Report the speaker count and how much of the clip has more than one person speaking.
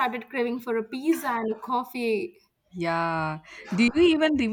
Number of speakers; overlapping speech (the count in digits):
2, no overlap